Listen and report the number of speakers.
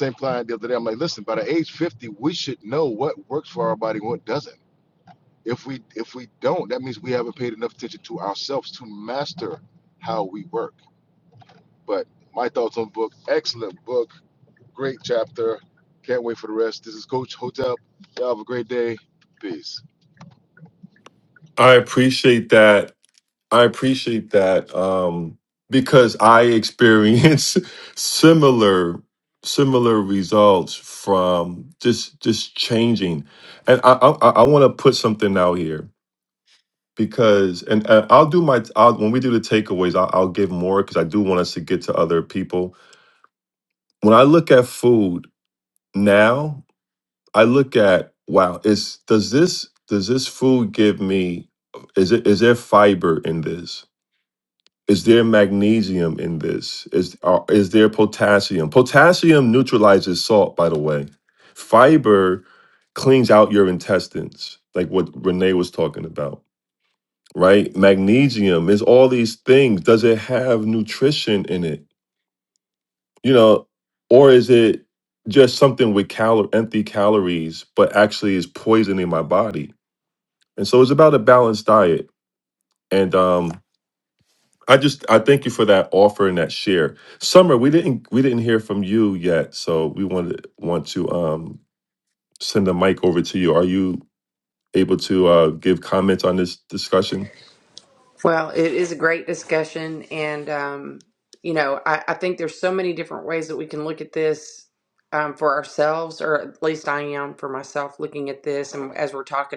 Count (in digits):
3